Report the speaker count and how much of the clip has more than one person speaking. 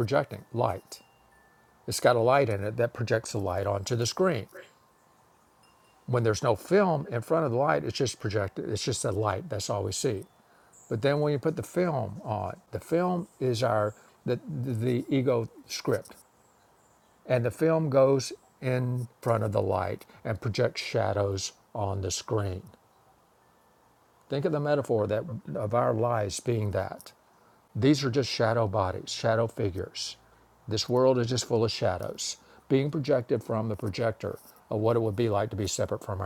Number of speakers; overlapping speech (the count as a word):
one, no overlap